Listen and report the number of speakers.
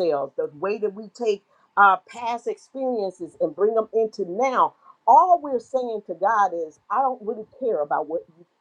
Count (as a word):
one